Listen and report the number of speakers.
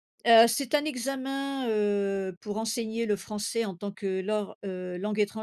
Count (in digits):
1